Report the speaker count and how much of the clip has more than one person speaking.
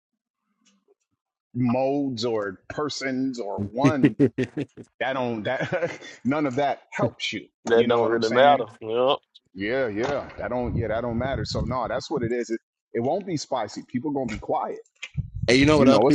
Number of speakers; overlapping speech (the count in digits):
3, about 10%